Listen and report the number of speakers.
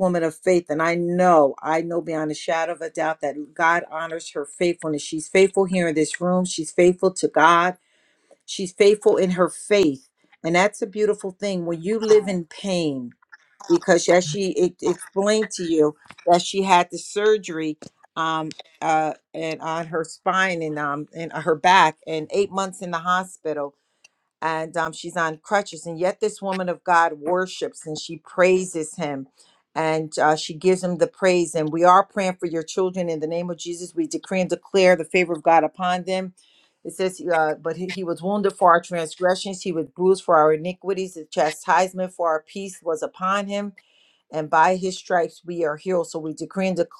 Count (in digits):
1